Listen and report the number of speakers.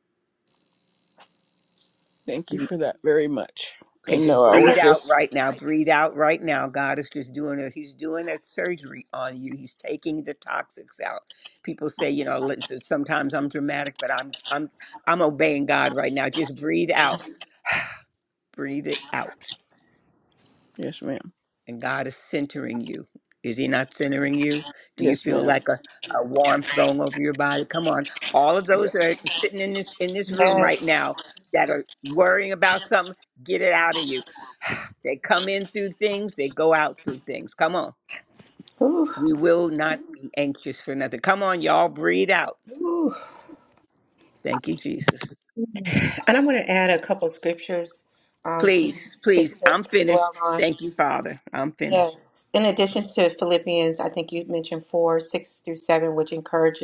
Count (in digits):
3